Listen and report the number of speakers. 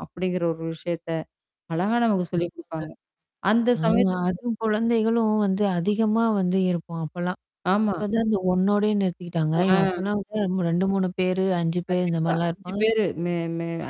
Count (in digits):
2